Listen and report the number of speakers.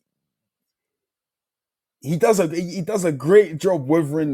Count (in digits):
1